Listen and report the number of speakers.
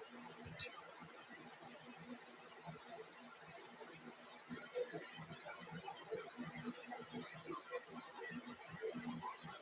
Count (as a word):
zero